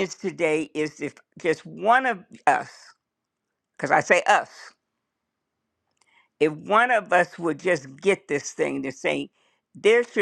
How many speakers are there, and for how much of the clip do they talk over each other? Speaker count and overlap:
one, no overlap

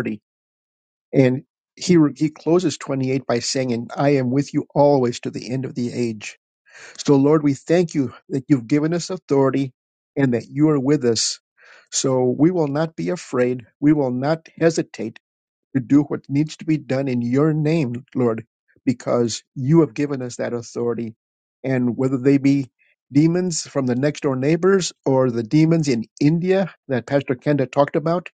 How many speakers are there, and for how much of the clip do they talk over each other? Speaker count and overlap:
one, no overlap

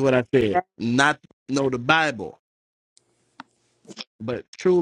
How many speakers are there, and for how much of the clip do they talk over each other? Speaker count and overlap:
one, no overlap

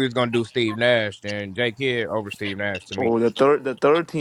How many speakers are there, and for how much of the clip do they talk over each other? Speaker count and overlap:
two, about 3%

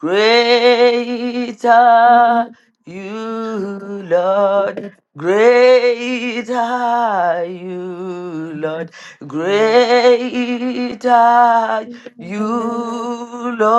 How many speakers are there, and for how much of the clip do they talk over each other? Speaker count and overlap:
one, no overlap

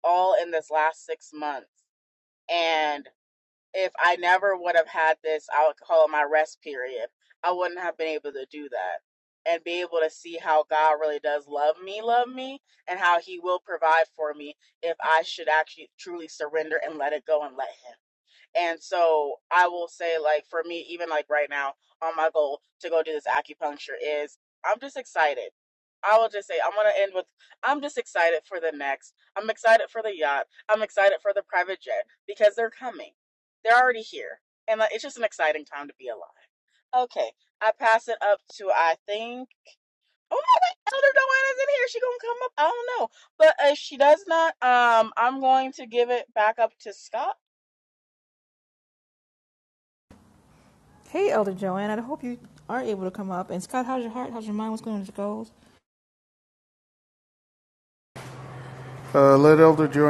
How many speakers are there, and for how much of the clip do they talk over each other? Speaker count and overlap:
three, no overlap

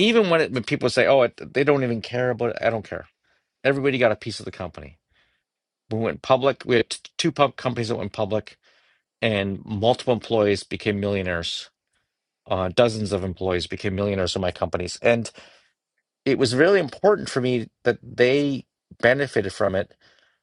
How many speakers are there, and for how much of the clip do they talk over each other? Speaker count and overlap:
one, no overlap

